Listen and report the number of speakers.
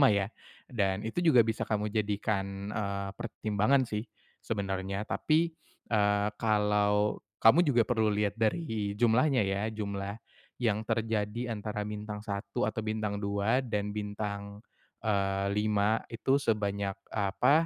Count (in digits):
1